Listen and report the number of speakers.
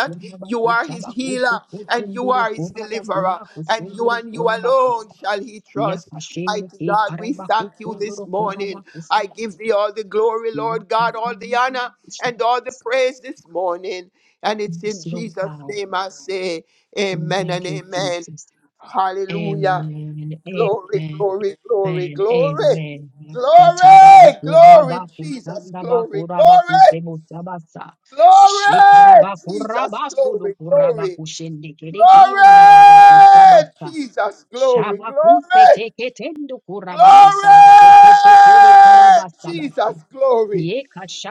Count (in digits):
2